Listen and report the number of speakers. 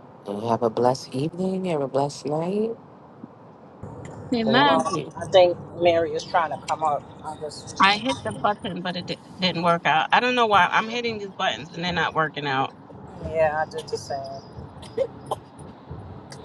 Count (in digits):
3